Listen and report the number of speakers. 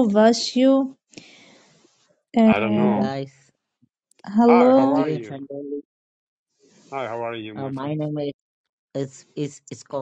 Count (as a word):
three